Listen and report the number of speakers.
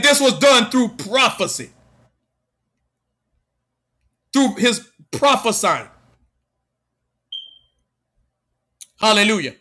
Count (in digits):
1